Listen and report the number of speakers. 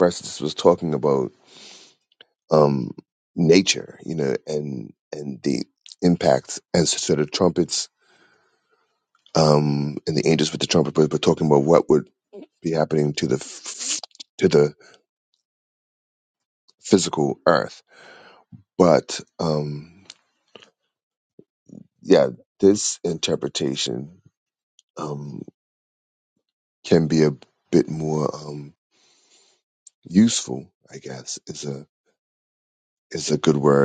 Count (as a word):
one